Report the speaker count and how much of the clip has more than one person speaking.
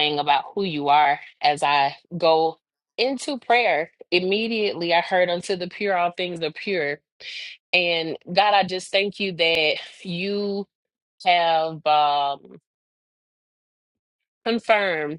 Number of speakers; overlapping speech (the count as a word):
one, no overlap